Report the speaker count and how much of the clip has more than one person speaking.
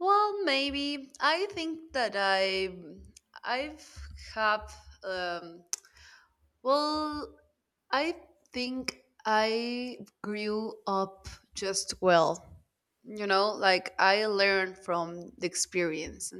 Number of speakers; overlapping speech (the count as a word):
one, no overlap